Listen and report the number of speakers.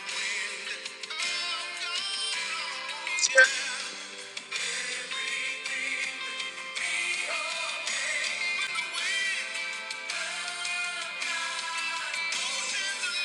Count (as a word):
zero